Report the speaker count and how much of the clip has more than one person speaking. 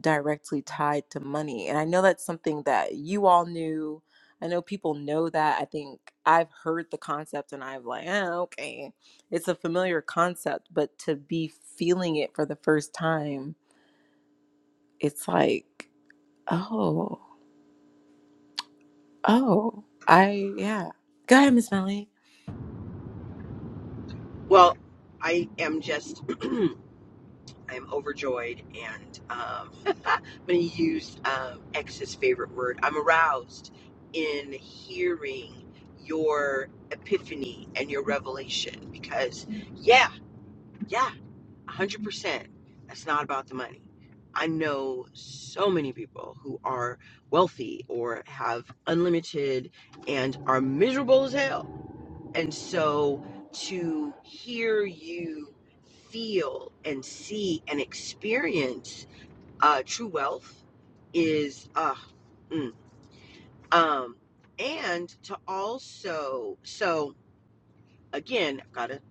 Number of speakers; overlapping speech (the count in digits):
2, no overlap